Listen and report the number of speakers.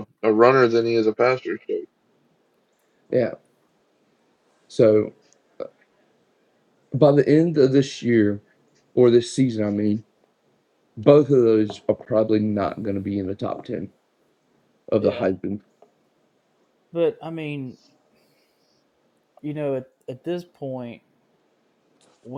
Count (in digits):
3